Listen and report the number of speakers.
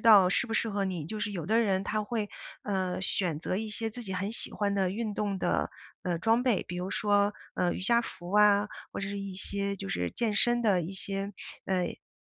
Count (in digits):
1